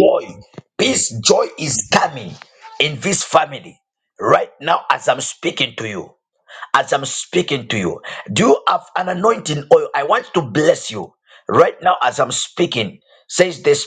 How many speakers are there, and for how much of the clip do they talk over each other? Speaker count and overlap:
1, no overlap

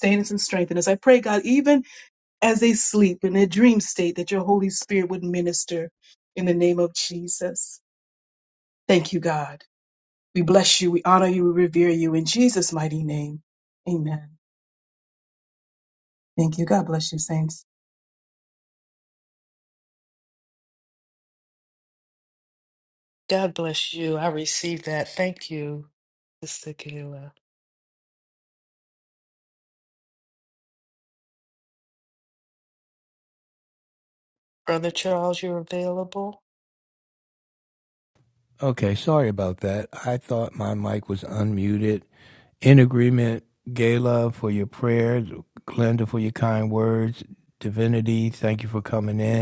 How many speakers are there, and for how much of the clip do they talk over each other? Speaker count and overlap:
3, no overlap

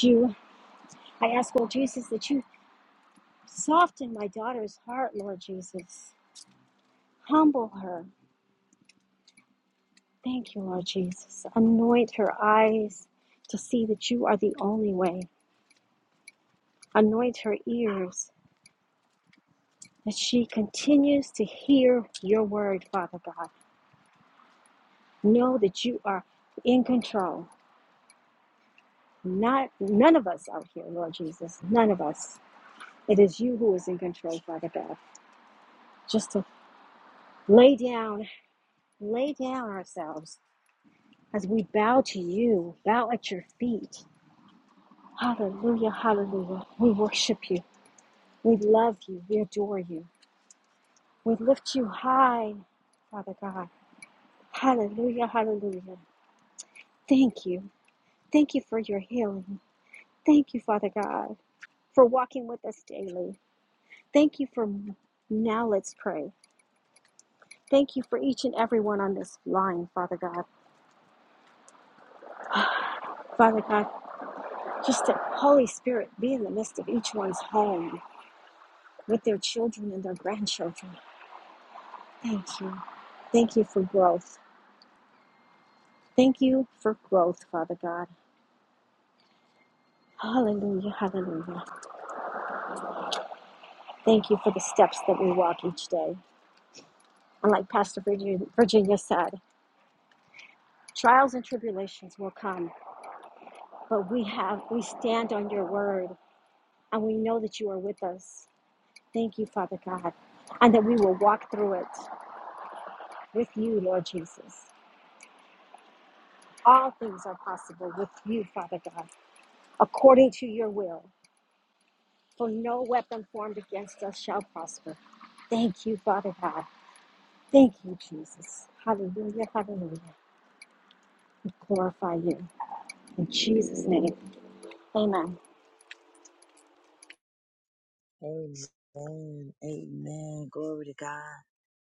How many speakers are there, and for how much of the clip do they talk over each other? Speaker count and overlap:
2, no overlap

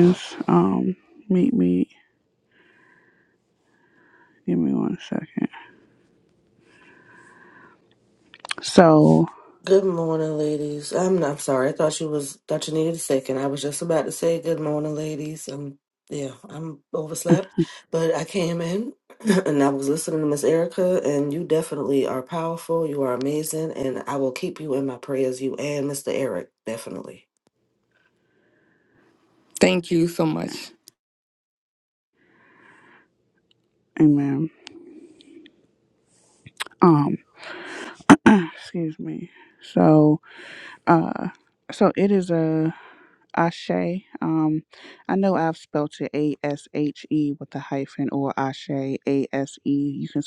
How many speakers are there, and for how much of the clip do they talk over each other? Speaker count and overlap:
3, no overlap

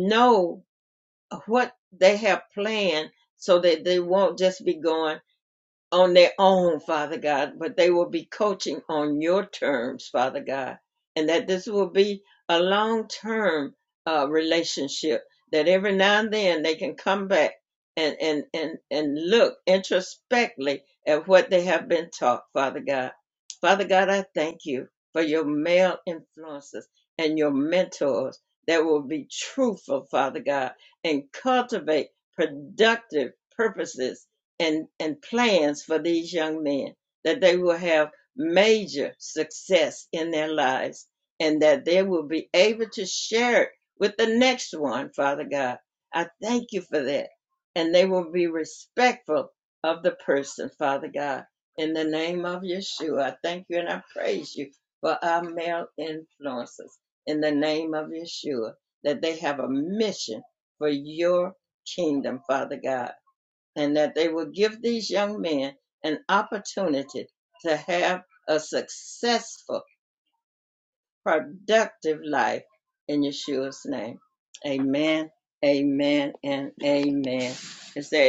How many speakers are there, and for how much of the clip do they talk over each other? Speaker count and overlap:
1, no overlap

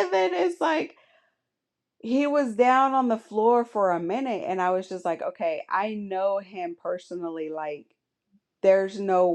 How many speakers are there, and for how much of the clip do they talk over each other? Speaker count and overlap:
1, no overlap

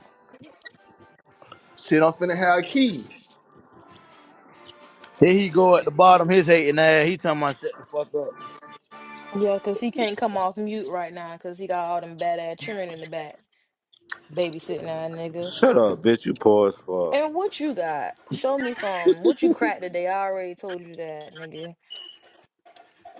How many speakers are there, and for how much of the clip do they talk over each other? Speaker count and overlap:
4, about 1%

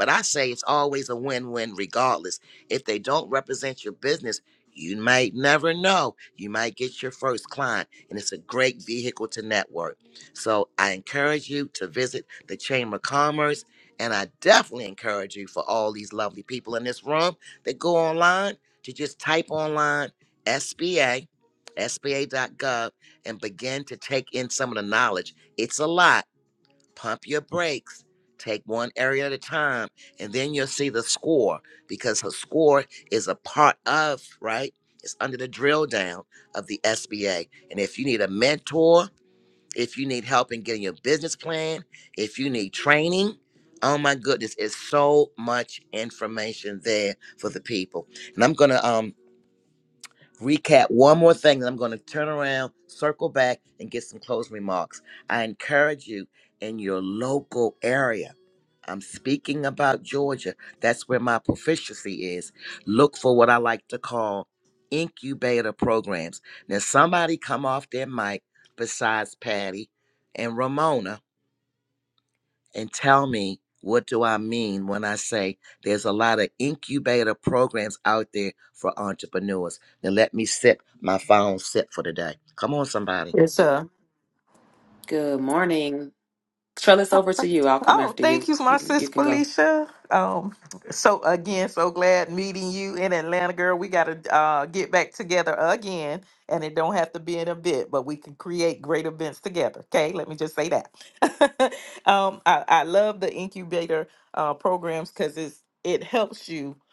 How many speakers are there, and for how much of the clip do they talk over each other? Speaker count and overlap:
3, about 1%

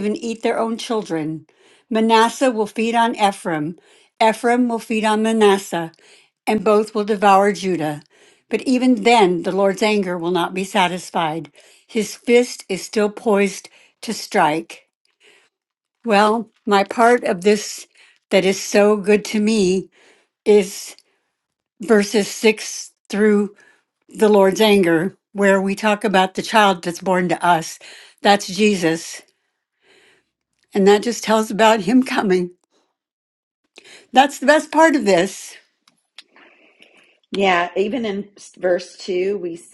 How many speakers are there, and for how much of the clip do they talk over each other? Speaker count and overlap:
2, no overlap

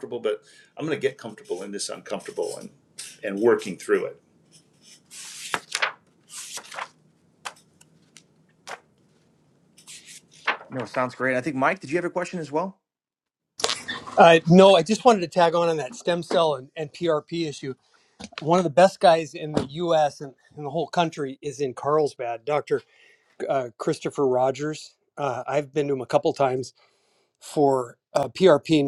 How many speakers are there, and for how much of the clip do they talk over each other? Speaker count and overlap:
3, no overlap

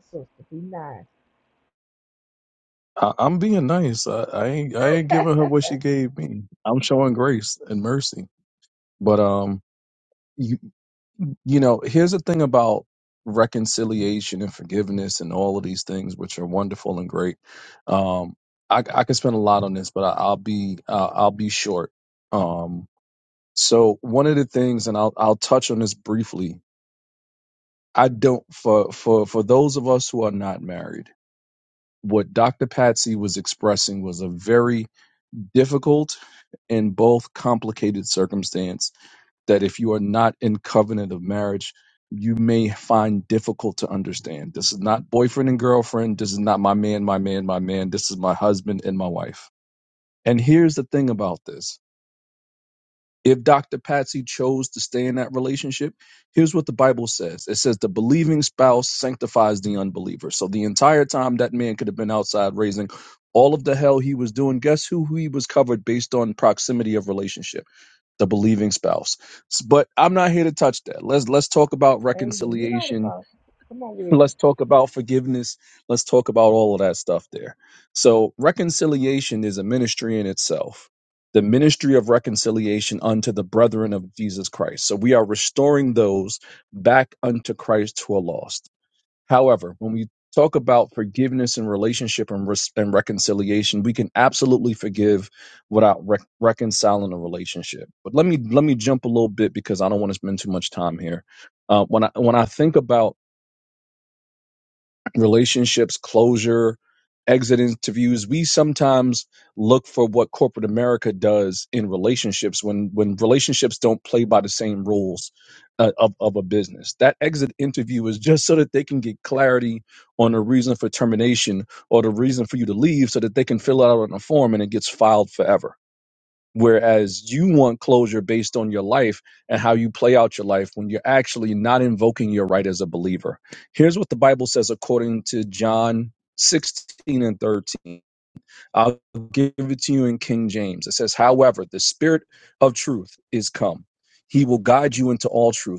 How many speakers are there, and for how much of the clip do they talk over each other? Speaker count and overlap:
2, about 1%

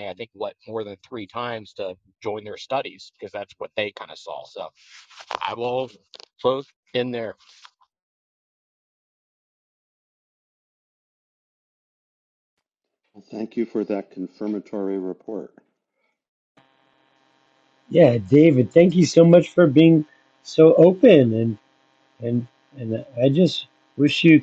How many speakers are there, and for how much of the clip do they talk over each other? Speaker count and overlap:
3, no overlap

